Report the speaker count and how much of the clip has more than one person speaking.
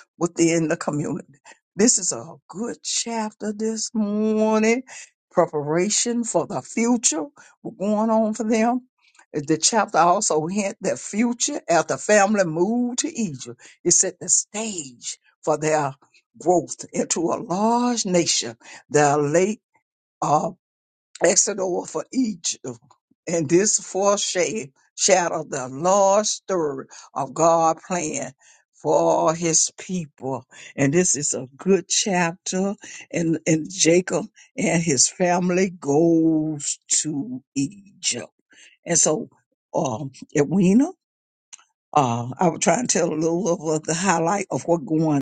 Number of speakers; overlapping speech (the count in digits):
1, no overlap